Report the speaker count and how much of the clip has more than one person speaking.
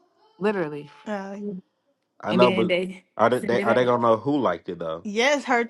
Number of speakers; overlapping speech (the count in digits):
3, about 16%